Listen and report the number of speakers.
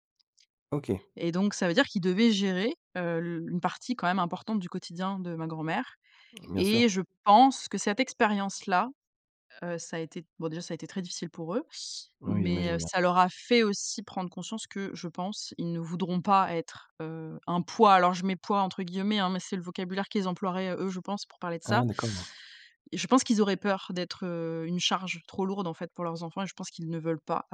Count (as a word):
two